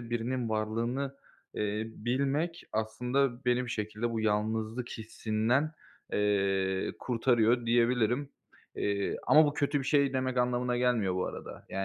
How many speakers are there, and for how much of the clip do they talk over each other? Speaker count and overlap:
1, no overlap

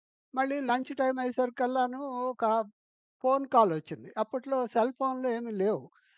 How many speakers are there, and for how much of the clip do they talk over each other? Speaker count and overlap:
1, no overlap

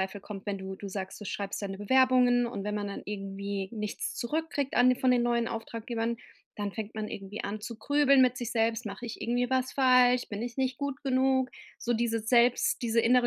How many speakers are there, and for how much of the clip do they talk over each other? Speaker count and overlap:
1, no overlap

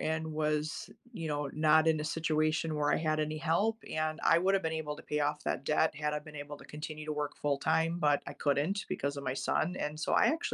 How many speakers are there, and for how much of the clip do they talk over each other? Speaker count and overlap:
1, no overlap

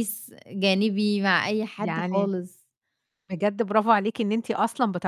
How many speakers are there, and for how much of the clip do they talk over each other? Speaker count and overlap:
2, about 9%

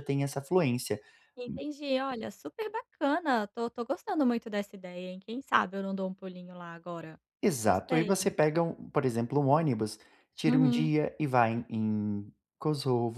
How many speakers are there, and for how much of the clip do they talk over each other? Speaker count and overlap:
2, about 8%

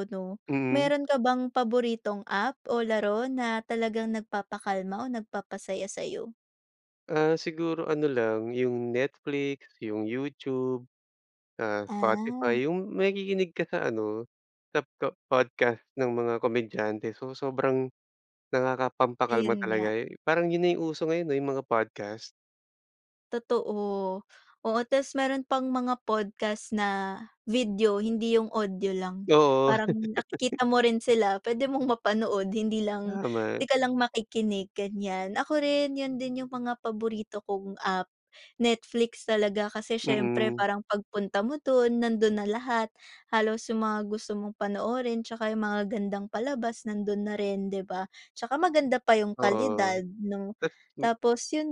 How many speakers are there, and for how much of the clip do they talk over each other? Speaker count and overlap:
2, about 6%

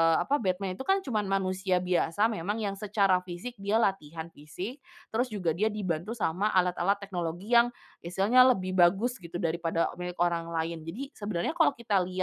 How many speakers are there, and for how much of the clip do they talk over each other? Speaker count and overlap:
1, no overlap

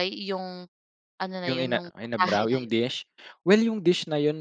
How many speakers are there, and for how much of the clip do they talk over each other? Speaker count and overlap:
2, about 28%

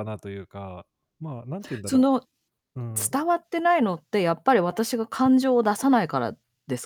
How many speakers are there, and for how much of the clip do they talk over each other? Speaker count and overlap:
2, about 3%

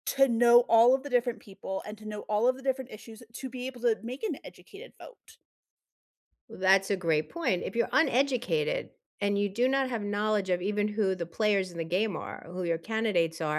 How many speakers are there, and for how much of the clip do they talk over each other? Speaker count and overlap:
2, no overlap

